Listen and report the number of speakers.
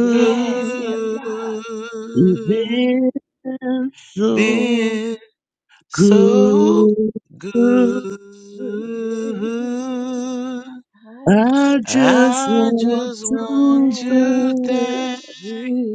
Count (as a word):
three